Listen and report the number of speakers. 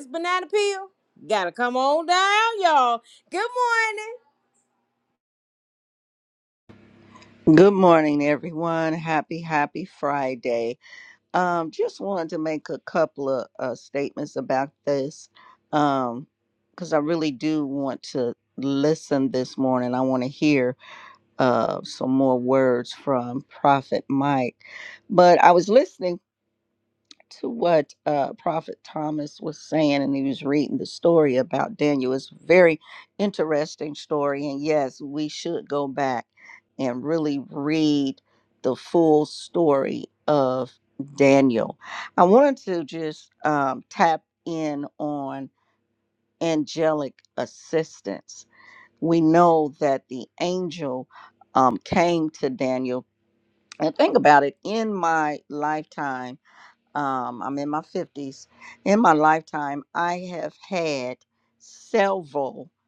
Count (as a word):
two